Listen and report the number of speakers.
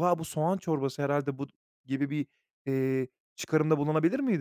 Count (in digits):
1